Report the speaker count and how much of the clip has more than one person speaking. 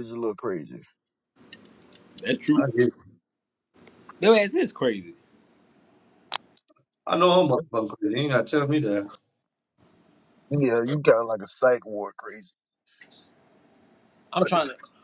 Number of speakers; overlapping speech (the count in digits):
3, about 2%